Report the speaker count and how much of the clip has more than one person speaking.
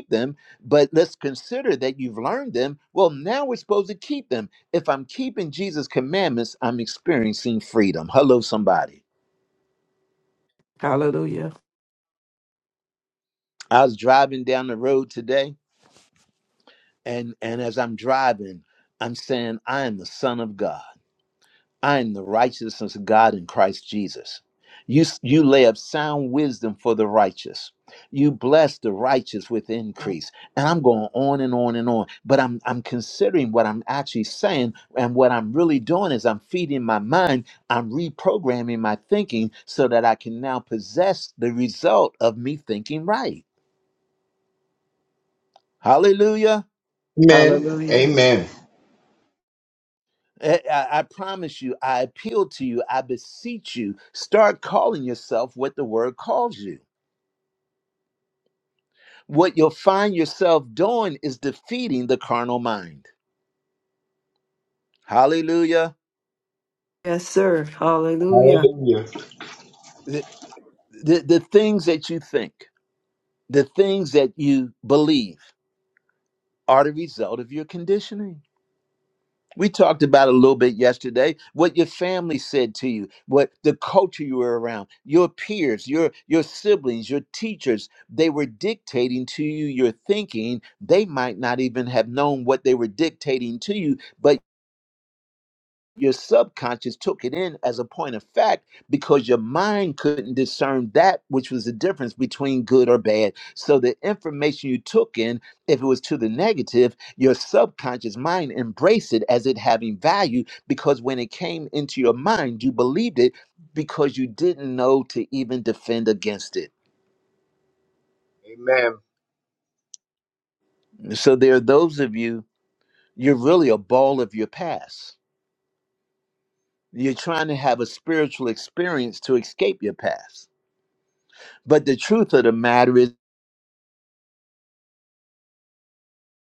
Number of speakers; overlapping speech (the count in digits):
4, about 1%